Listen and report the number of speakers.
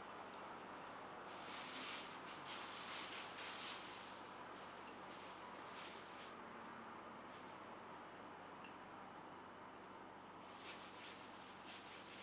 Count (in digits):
0